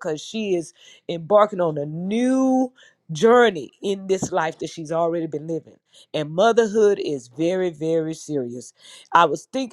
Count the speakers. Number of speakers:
one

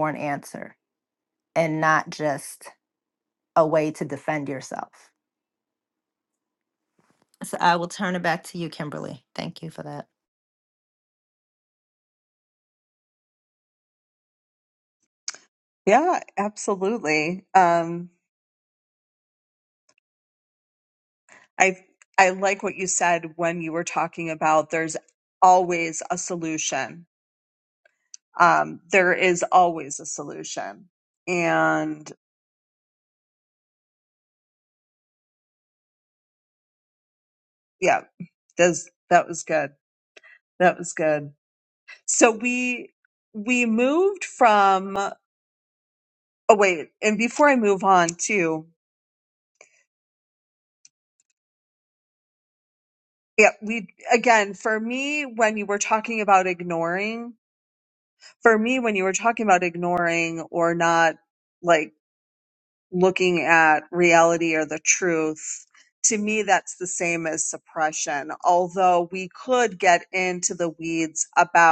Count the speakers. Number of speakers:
two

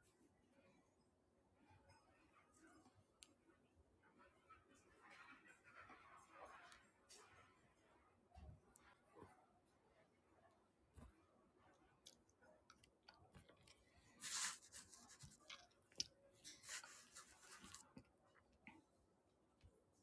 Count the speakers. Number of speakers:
zero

